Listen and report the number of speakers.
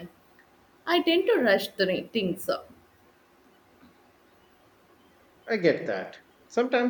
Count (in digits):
2